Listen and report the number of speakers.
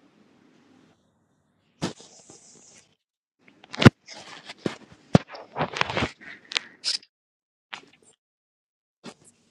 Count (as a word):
zero